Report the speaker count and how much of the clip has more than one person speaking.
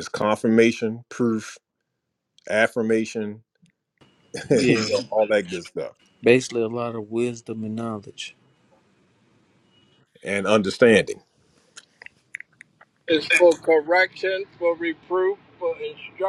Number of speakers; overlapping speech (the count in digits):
3, about 2%